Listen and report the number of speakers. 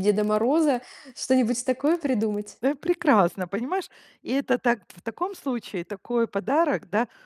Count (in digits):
2